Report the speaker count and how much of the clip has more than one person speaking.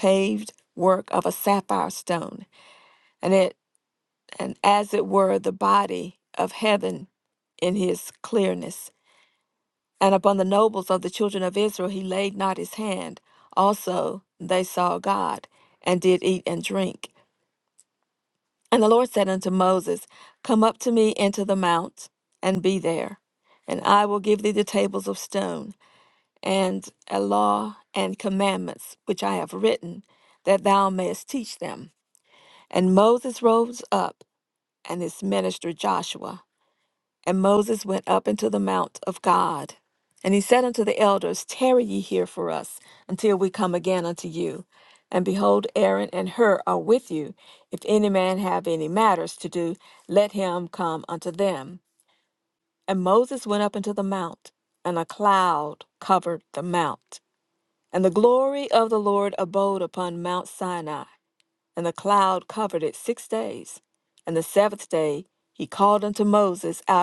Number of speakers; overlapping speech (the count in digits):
1, no overlap